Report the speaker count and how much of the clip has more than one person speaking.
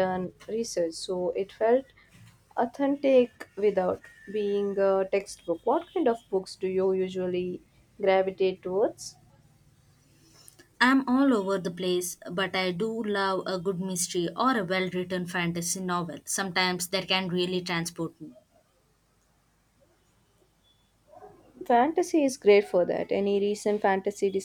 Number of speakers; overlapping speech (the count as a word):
two, no overlap